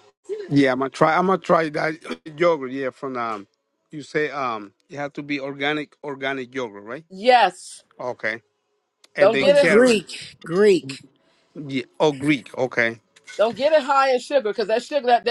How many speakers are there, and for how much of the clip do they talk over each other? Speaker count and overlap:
3, about 5%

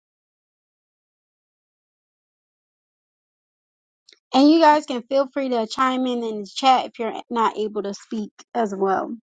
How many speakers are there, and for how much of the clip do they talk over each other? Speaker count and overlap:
1, no overlap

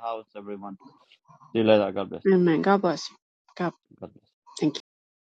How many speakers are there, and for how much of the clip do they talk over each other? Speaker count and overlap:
2, no overlap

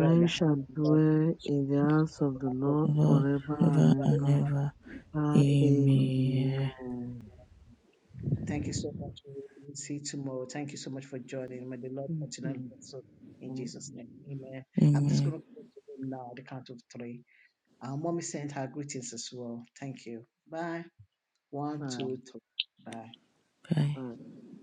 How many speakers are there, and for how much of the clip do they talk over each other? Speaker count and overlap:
3, about 20%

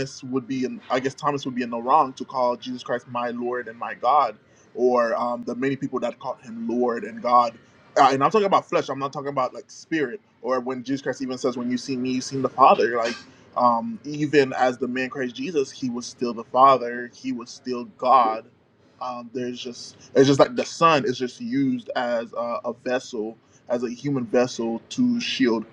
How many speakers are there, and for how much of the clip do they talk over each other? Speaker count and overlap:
1, no overlap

